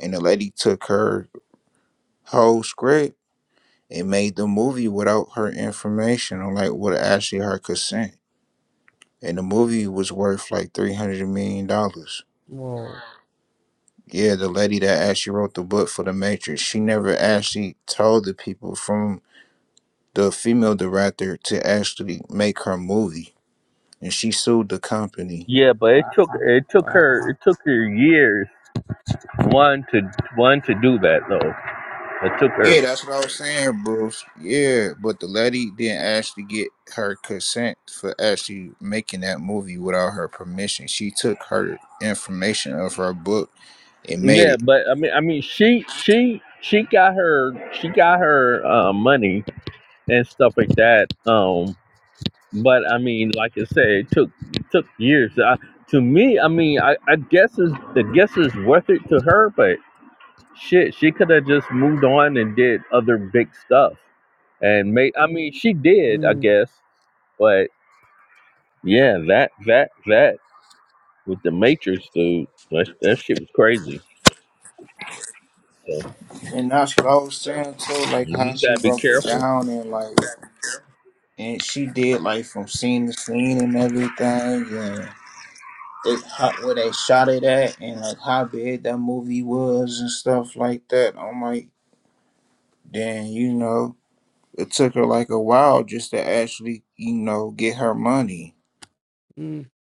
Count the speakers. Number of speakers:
three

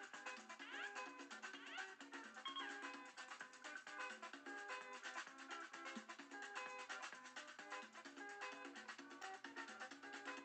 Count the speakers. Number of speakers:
zero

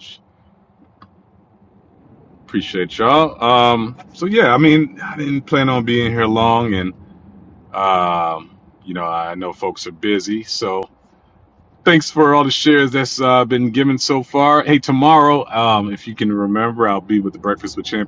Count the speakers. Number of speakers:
one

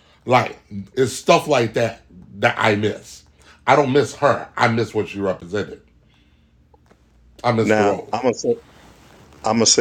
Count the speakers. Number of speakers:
two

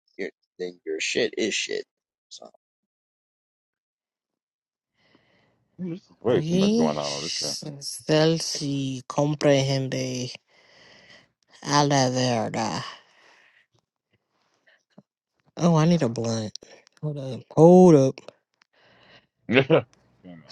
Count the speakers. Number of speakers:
three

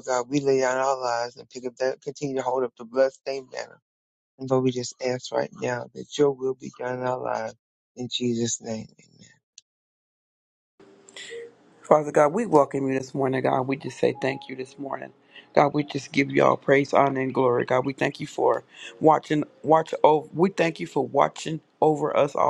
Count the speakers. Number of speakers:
two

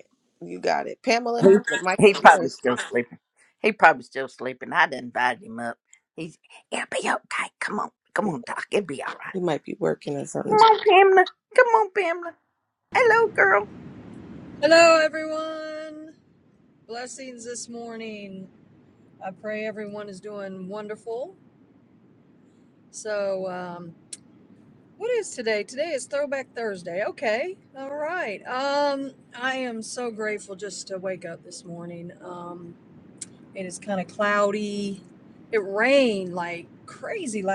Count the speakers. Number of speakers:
three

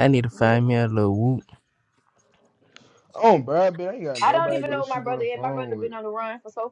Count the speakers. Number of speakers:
three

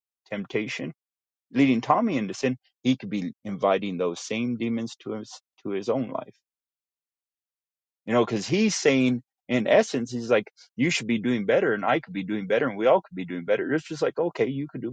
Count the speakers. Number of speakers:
one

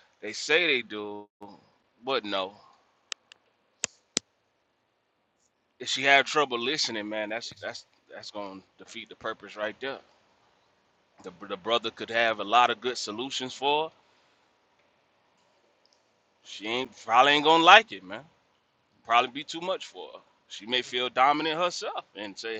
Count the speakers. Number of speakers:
one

